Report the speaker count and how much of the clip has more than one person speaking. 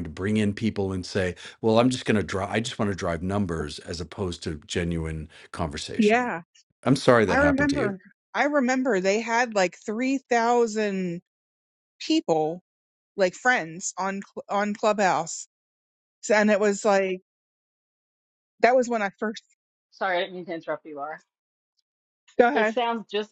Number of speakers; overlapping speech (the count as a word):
three, about 5%